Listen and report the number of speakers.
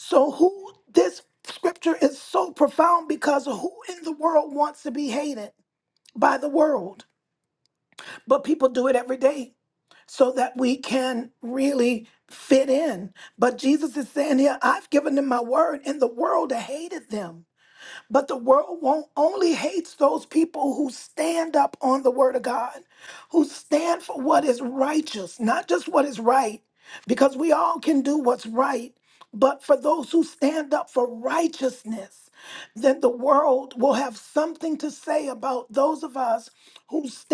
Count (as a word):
one